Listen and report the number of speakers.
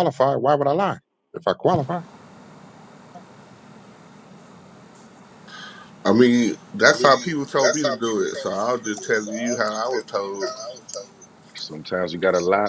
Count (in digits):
3